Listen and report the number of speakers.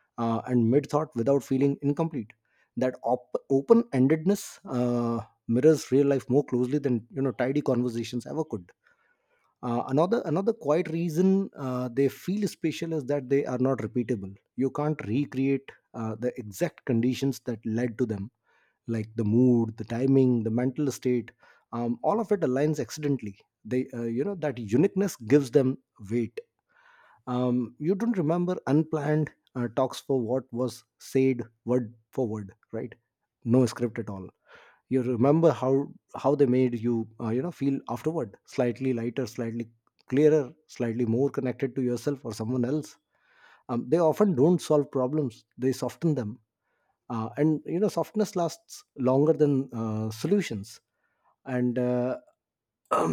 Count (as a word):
one